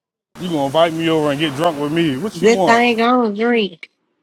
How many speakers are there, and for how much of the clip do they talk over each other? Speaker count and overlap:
2, about 11%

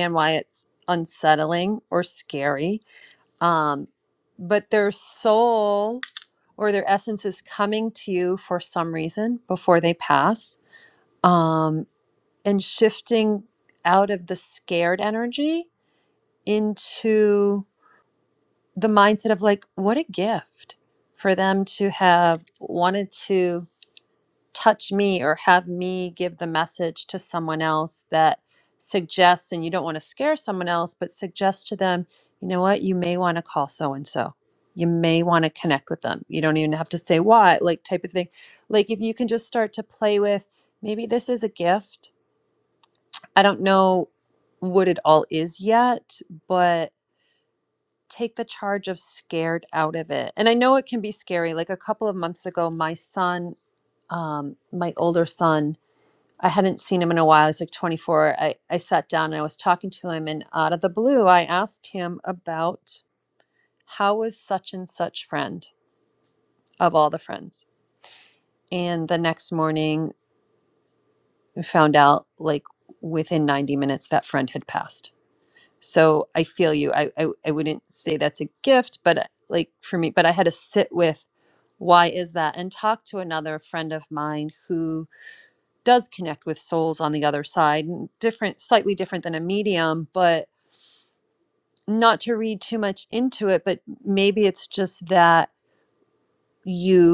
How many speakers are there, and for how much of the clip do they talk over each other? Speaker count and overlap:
1, no overlap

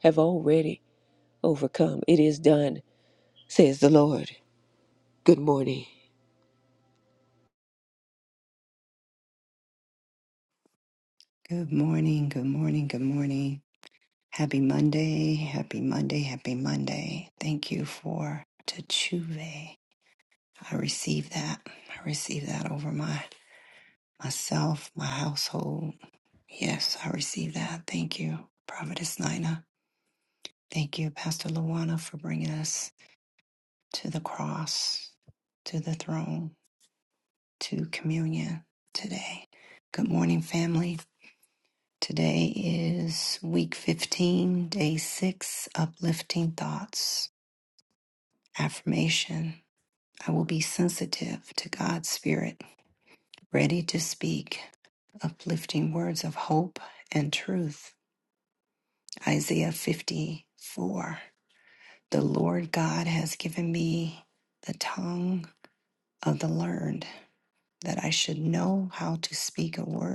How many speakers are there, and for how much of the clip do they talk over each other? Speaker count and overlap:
2, no overlap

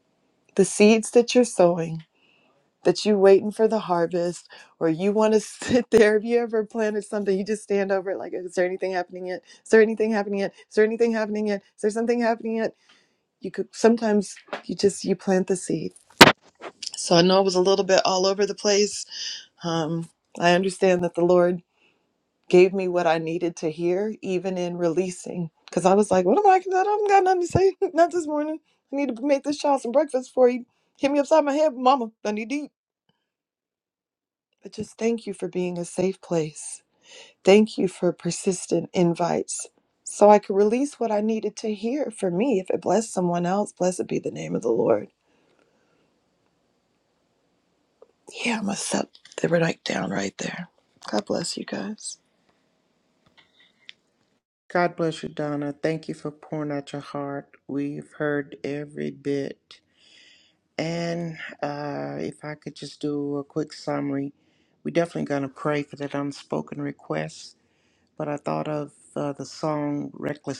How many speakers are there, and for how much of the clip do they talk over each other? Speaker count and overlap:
2, no overlap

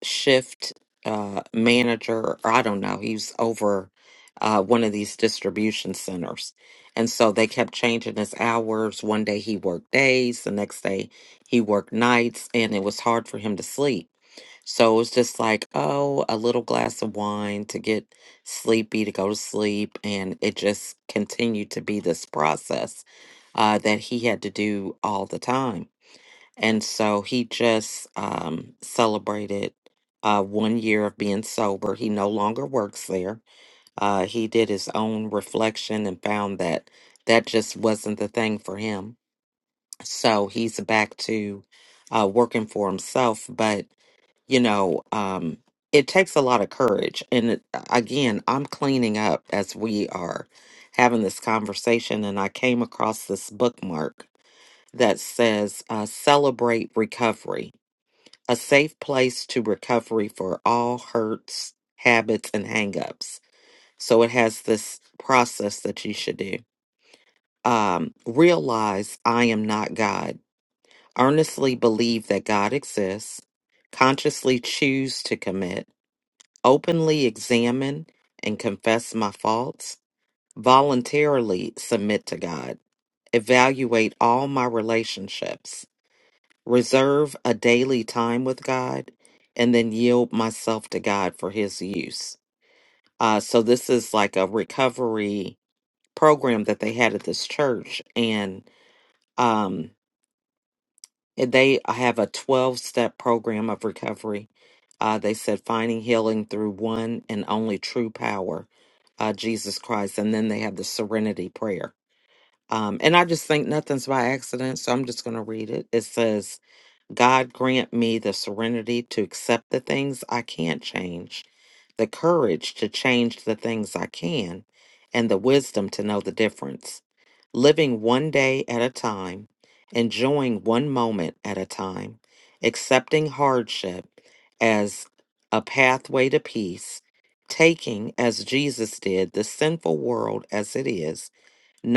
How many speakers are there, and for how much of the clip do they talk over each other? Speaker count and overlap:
1, no overlap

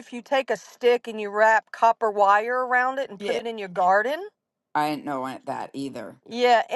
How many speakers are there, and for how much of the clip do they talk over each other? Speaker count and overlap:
2, about 3%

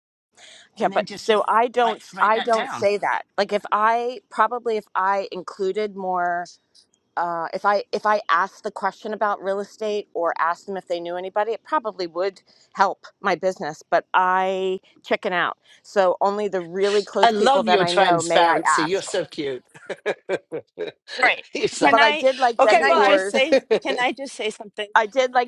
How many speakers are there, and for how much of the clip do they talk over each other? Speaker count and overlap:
3, about 19%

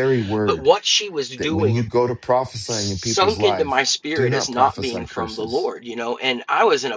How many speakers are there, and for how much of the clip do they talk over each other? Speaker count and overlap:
2, about 44%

